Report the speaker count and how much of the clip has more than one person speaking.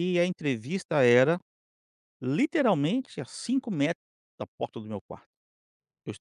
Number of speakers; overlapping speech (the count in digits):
1, no overlap